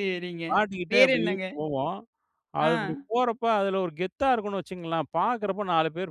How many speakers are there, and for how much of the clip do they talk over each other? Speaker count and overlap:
2, about 12%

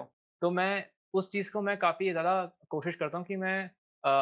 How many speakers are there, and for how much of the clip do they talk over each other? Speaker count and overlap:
1, no overlap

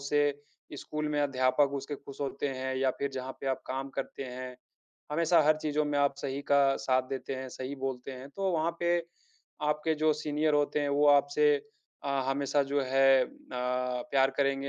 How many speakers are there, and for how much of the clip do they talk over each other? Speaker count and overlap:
1, no overlap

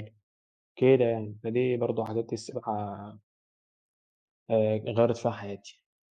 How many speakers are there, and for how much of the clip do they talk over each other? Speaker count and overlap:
1, no overlap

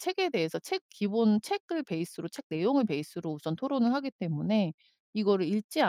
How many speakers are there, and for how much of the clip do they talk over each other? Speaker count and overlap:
1, no overlap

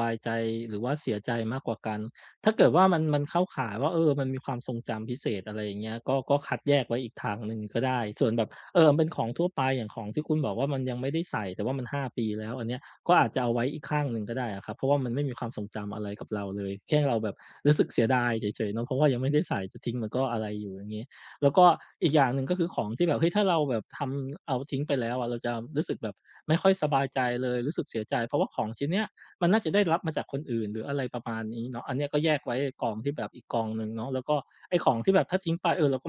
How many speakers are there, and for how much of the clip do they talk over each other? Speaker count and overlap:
1, no overlap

